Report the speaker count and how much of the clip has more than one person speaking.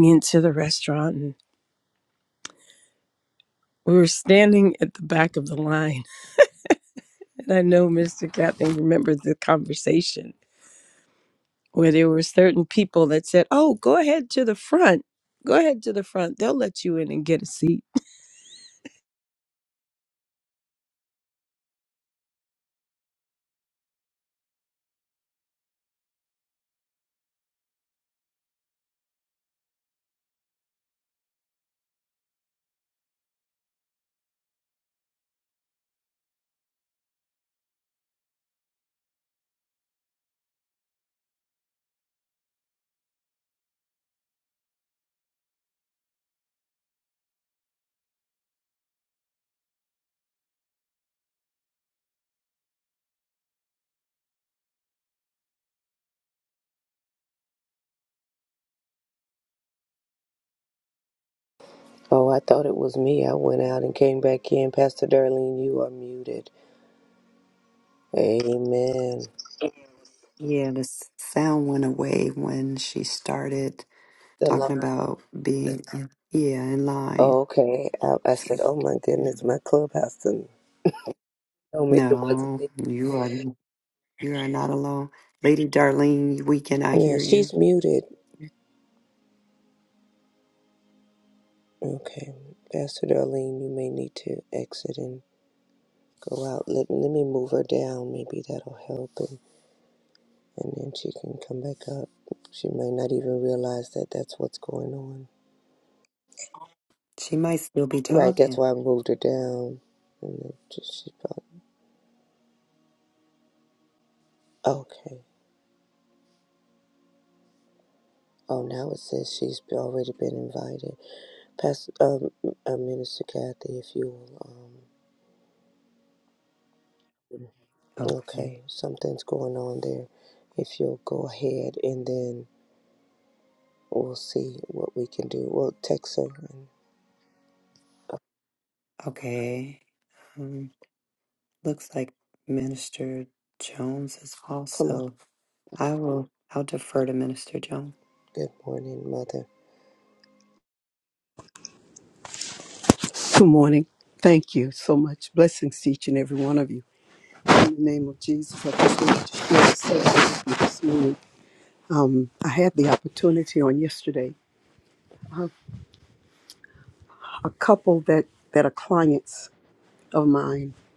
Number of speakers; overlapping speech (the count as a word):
four, about 2%